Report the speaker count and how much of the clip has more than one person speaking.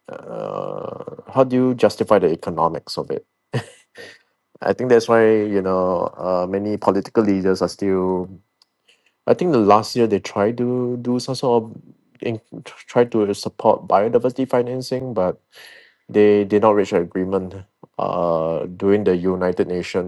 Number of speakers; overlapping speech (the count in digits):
1, no overlap